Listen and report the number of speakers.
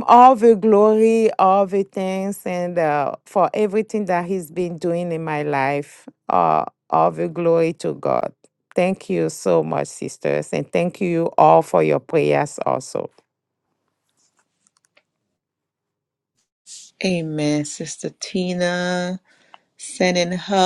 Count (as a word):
two